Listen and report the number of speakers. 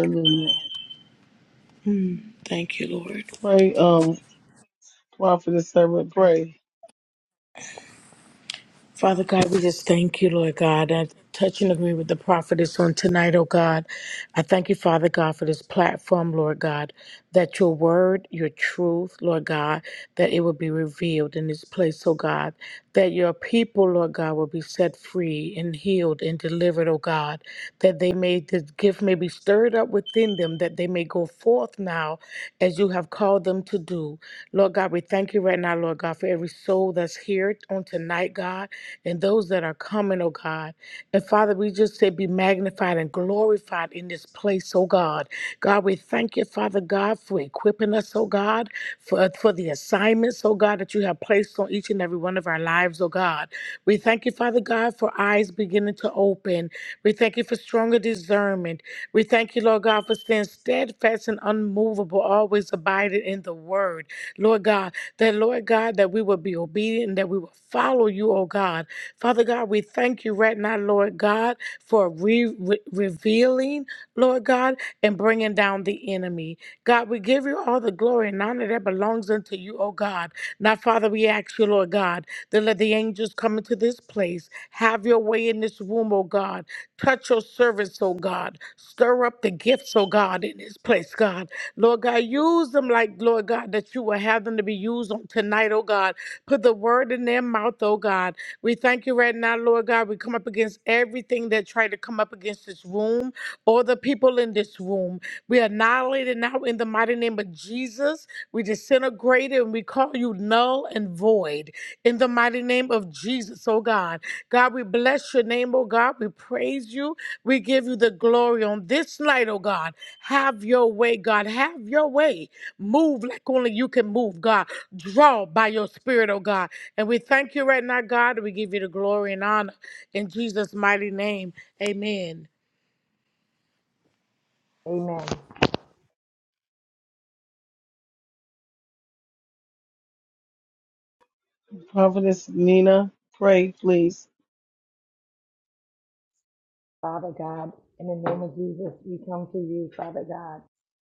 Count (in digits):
3